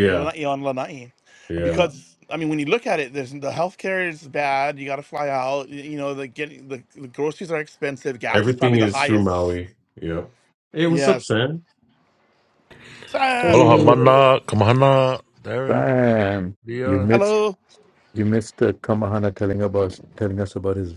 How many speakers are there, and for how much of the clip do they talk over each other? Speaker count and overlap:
4, about 14%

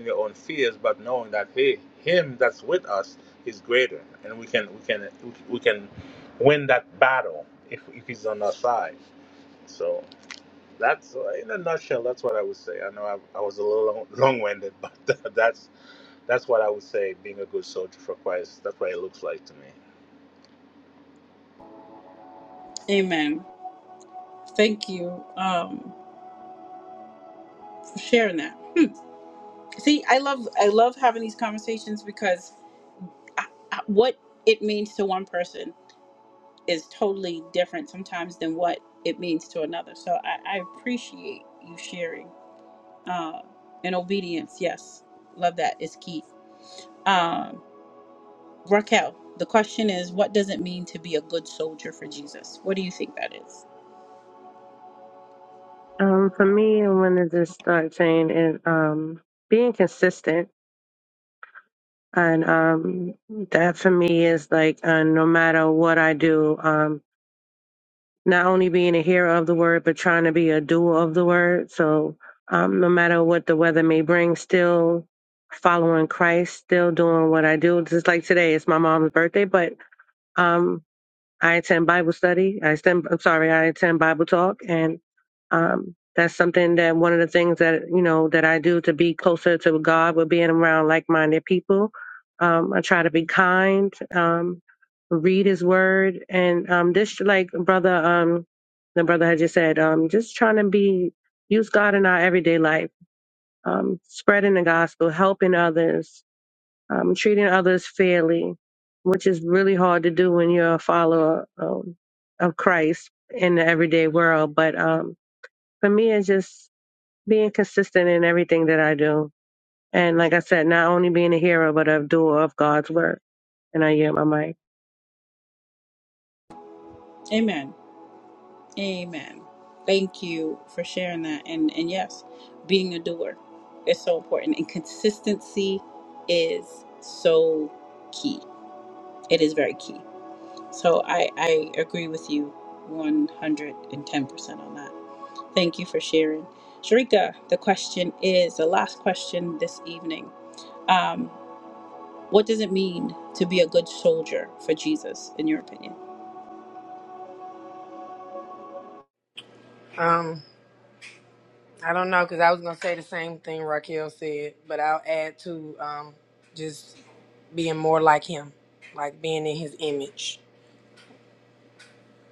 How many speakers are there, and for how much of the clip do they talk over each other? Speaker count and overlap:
4, no overlap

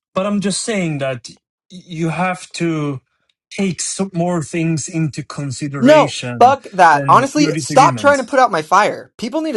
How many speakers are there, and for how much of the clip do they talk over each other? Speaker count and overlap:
2, about 19%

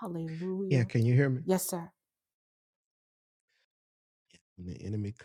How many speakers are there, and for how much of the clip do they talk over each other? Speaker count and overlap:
2, about 3%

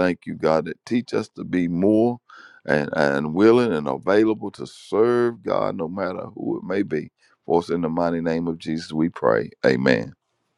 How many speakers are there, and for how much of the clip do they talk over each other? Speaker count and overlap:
1, no overlap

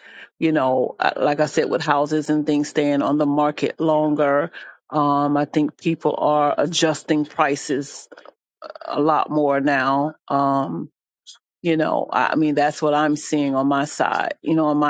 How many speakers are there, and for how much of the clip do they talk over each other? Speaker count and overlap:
1, no overlap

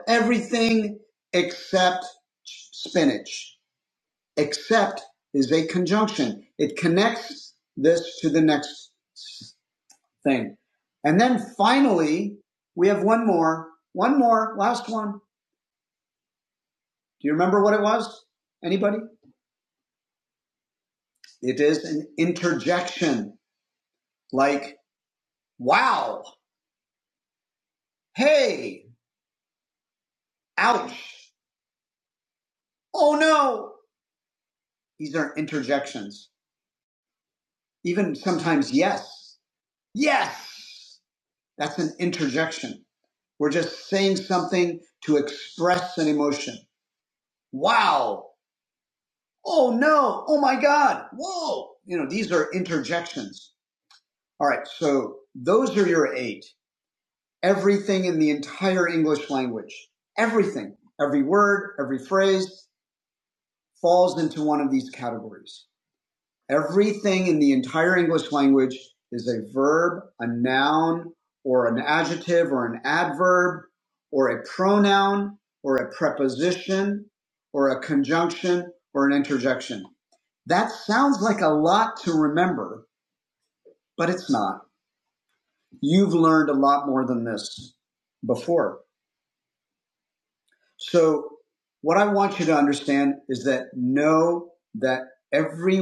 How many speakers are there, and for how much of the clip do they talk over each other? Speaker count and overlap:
1, no overlap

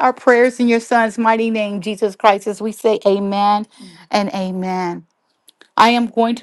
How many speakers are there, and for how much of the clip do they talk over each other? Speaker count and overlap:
1, no overlap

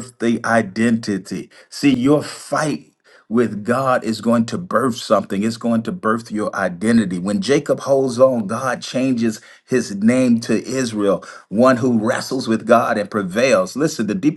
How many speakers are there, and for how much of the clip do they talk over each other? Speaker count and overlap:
1, no overlap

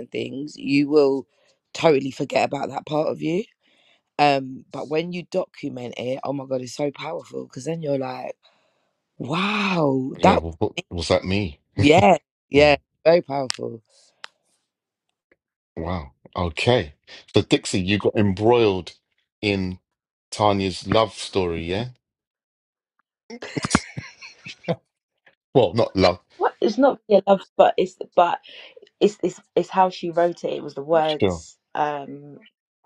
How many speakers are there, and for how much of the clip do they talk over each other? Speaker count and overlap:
3, about 2%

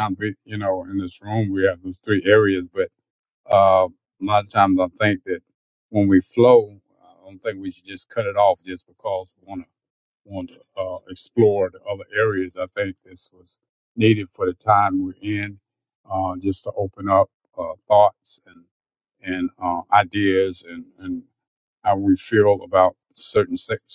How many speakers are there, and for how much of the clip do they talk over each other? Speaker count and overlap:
1, no overlap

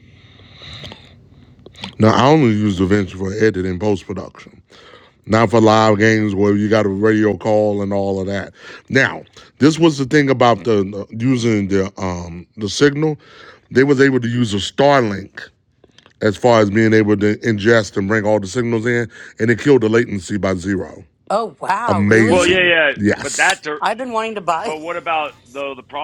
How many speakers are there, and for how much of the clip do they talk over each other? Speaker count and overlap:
3, about 7%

